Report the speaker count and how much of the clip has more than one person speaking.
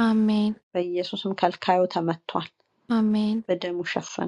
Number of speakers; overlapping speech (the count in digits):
2, no overlap